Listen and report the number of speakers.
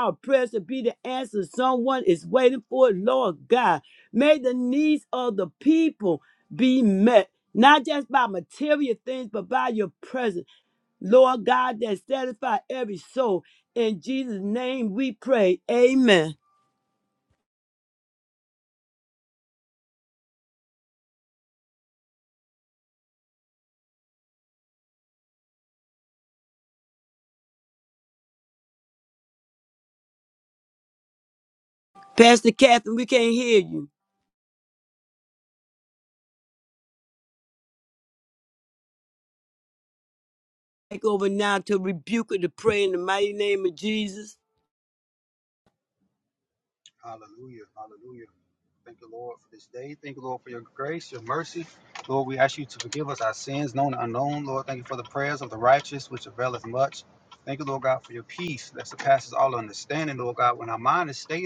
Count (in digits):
2